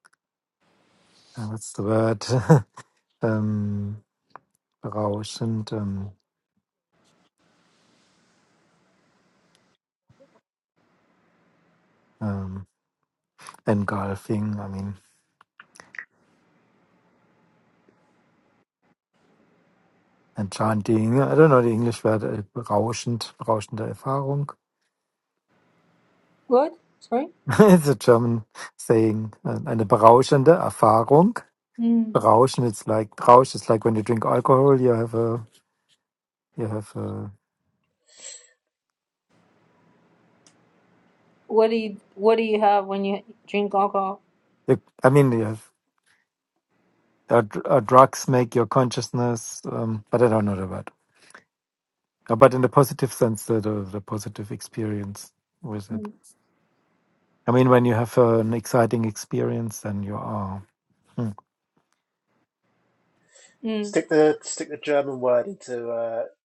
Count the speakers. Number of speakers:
3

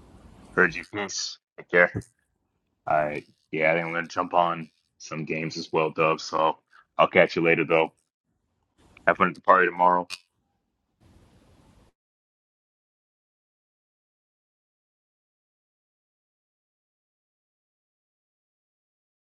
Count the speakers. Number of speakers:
1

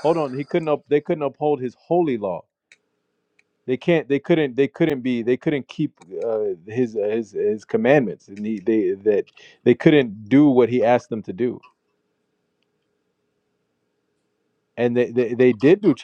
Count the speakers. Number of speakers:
1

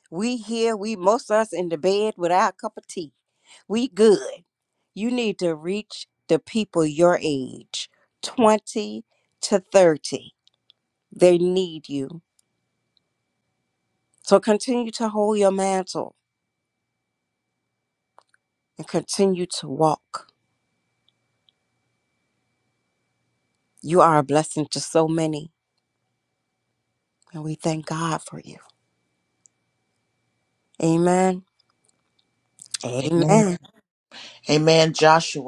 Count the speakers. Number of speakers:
2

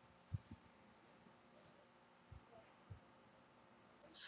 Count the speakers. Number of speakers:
0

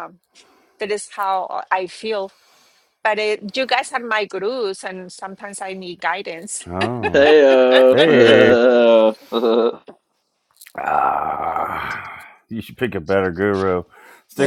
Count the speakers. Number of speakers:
3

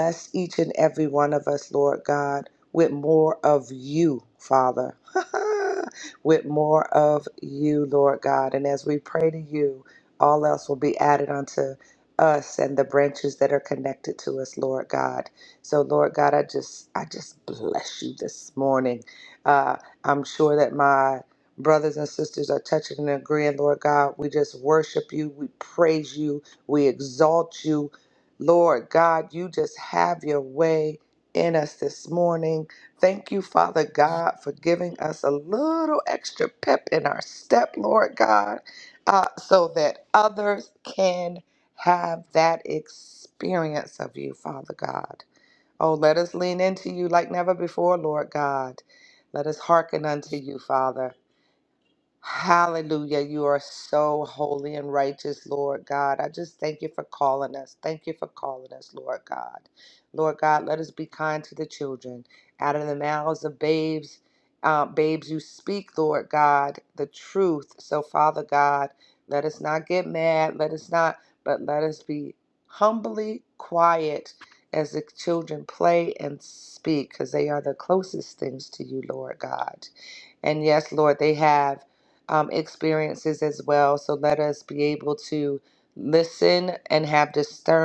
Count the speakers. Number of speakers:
1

